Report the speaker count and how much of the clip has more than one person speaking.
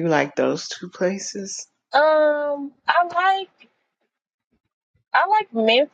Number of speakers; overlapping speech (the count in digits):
2, no overlap